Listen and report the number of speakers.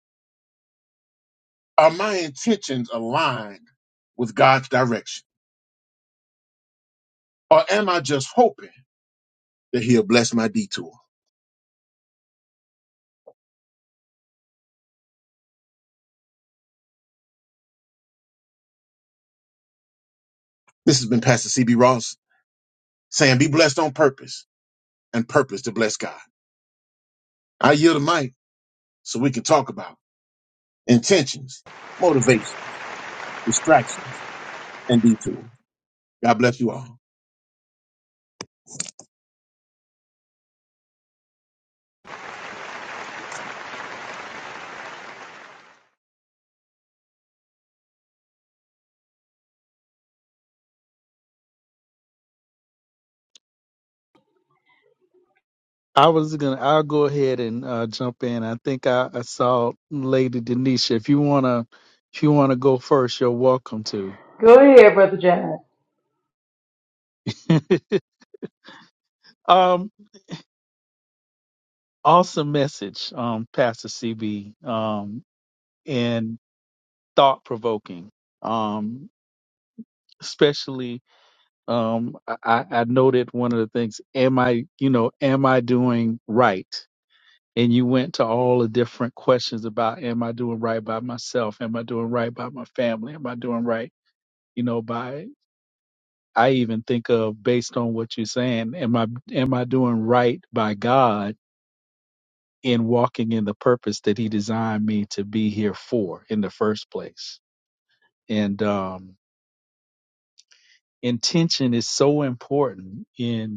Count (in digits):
3